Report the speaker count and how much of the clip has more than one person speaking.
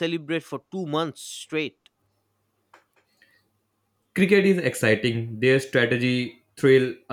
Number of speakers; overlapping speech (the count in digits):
2, no overlap